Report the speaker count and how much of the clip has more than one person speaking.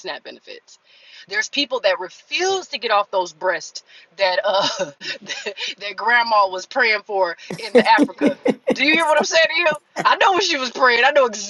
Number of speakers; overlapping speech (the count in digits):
1, no overlap